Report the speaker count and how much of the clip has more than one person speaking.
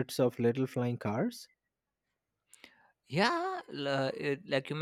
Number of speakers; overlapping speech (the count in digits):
2, no overlap